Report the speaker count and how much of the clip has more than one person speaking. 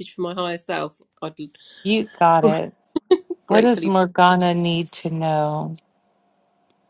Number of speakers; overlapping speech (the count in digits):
2, about 6%